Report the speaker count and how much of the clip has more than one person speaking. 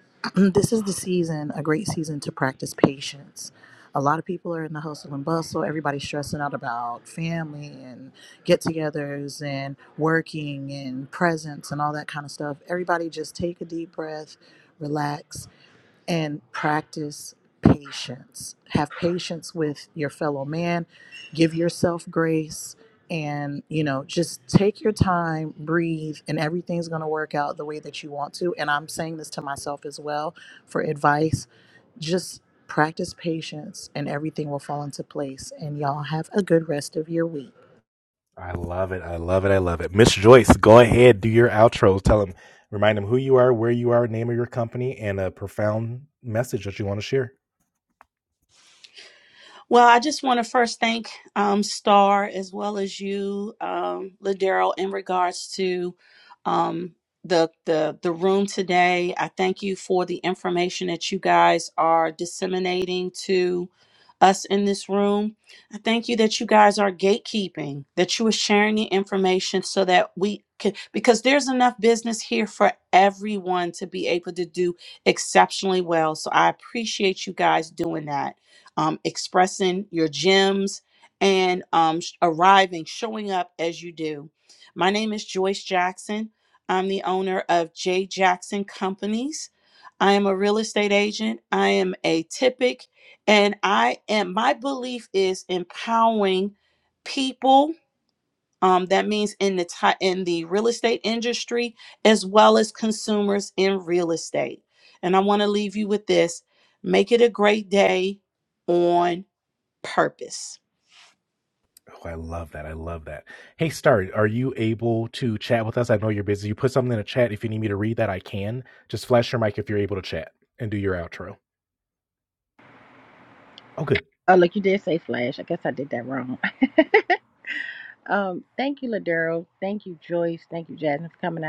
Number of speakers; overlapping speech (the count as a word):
four, no overlap